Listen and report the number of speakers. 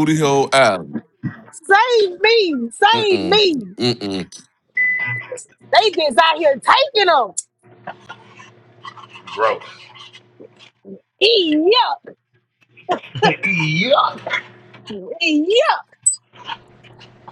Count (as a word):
three